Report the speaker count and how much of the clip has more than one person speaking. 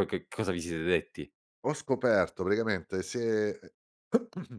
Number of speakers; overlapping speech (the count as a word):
two, no overlap